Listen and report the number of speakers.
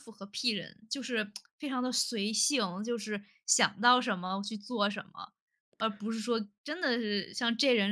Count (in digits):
1